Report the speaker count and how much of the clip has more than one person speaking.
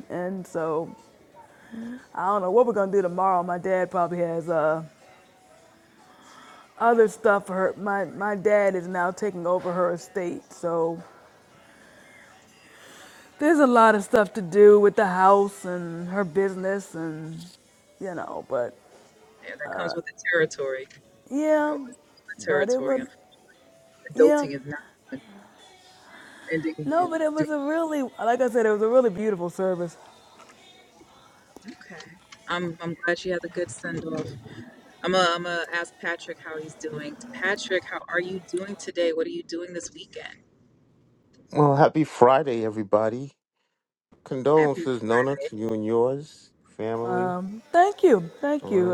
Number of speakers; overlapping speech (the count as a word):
three, about 5%